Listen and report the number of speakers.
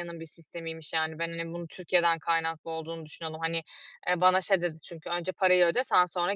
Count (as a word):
one